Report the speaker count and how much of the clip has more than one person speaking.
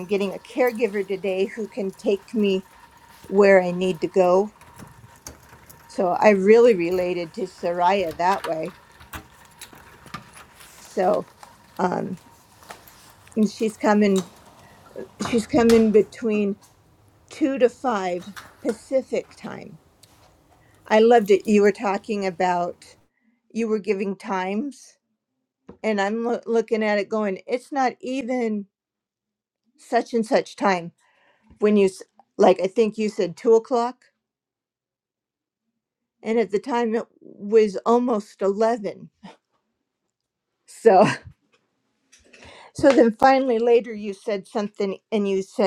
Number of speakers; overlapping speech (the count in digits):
1, no overlap